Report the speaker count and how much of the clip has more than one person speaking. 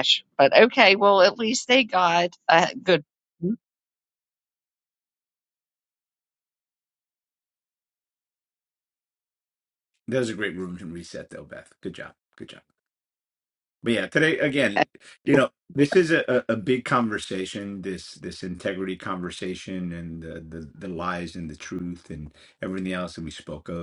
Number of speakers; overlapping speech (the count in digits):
2, no overlap